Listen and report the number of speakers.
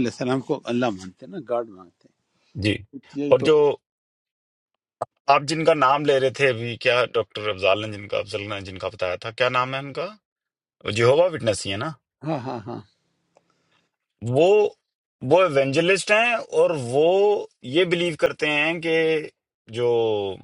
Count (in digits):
2